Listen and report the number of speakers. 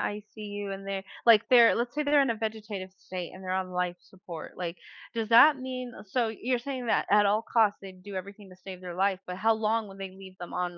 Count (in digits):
1